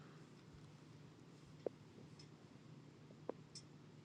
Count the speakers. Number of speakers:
0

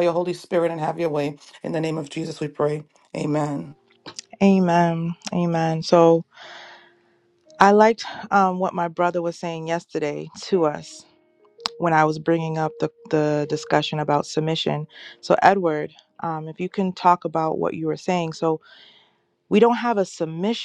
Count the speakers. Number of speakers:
2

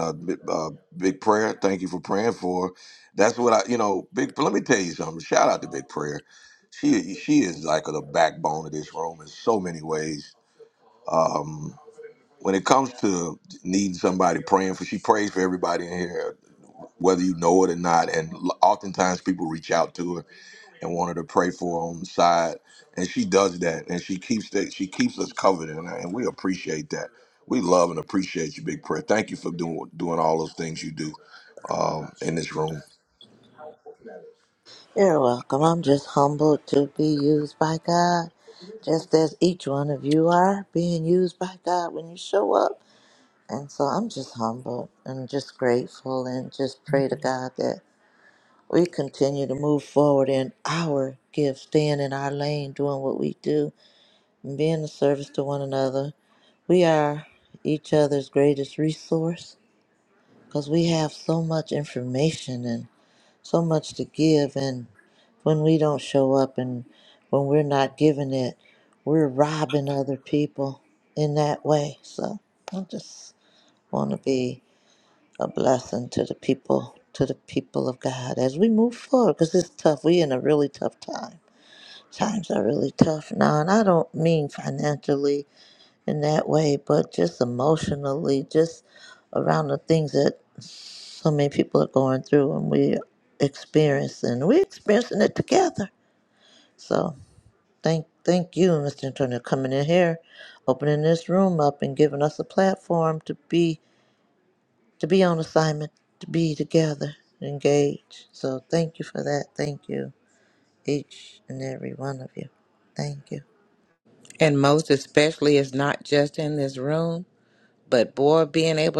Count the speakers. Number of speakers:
3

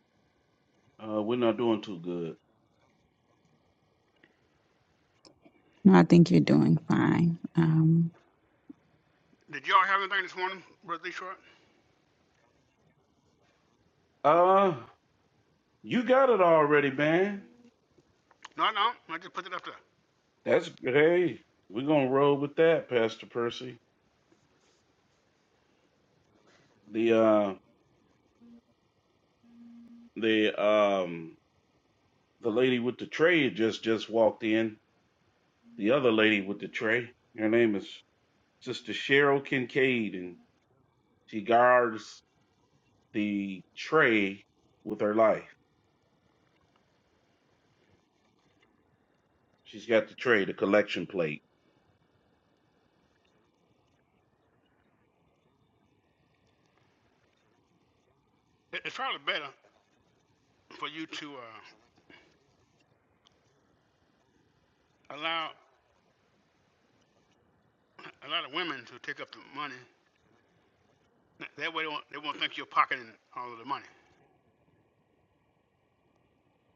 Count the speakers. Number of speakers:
3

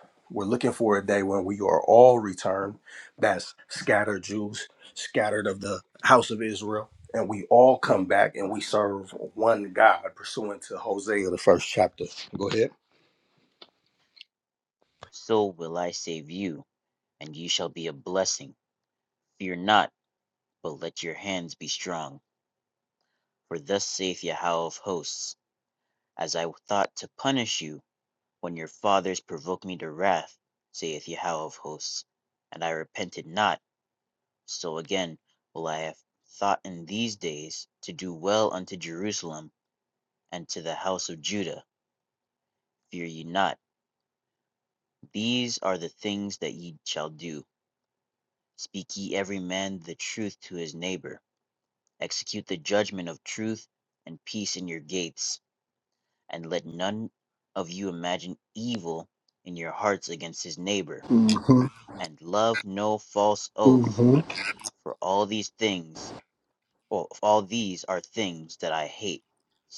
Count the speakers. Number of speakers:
3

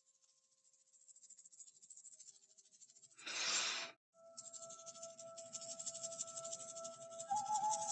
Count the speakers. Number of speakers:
0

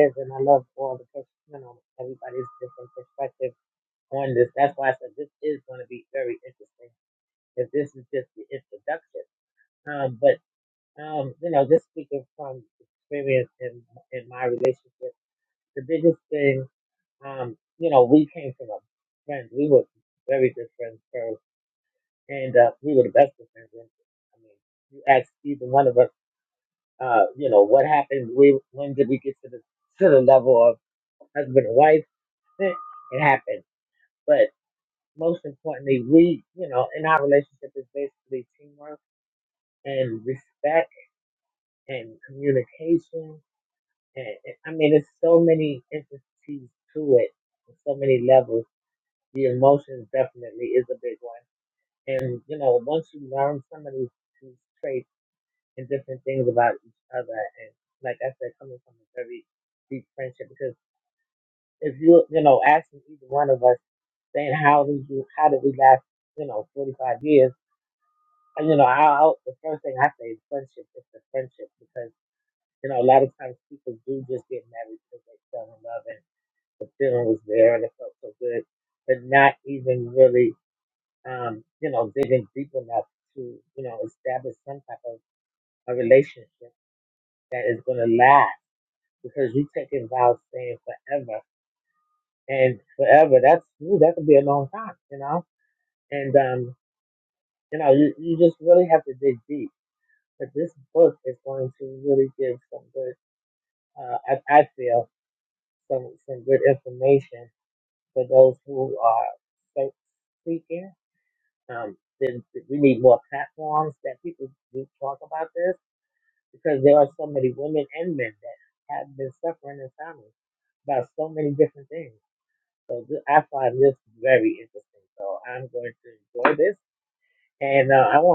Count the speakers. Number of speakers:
1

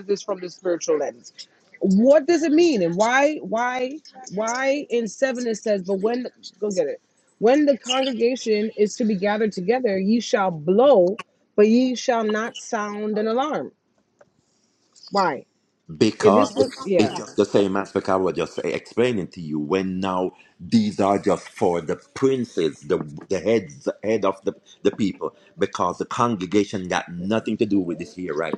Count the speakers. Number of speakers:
2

